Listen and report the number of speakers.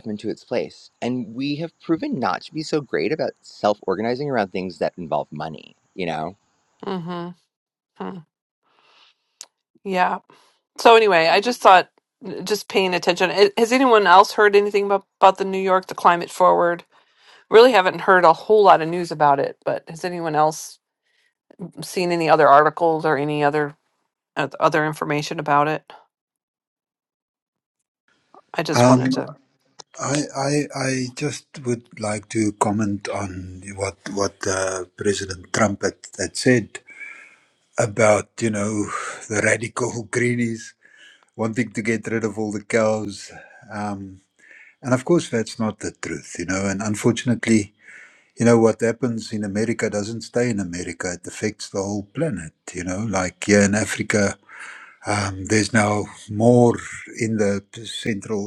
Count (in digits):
3